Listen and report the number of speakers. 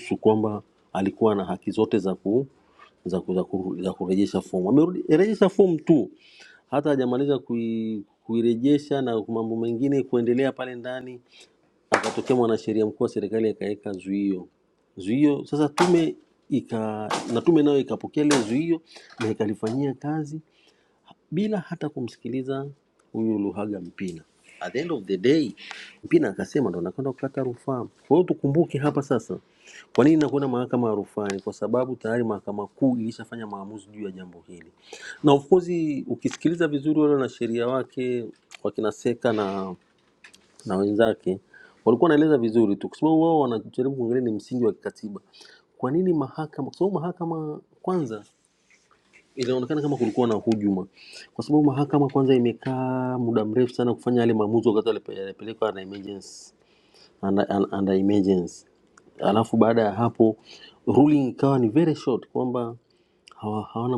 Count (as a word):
one